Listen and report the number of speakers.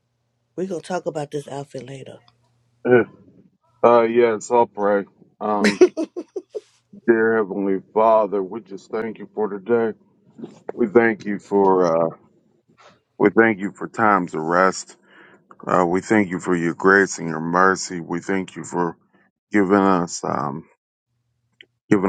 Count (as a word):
two